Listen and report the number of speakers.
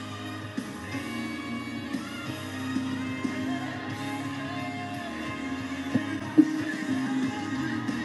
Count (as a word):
zero